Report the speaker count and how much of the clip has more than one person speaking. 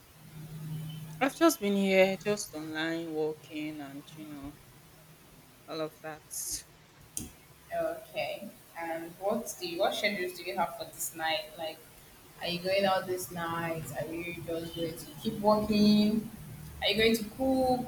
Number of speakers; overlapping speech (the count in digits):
2, no overlap